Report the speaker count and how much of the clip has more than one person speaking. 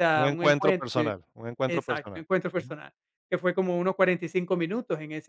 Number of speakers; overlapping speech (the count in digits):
2, about 22%